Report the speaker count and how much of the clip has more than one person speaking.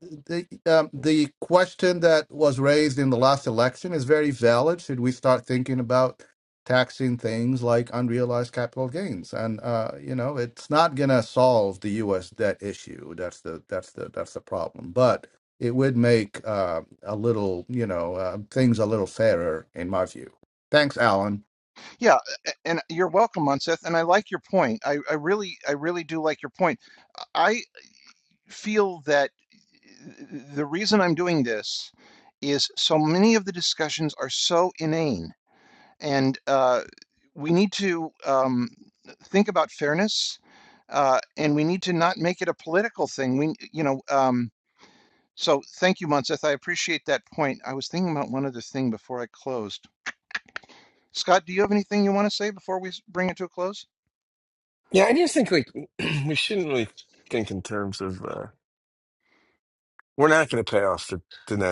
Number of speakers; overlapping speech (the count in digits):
3, no overlap